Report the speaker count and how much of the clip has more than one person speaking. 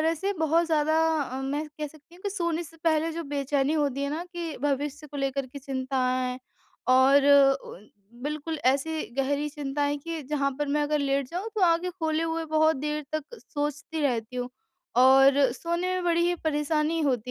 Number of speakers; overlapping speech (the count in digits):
1, no overlap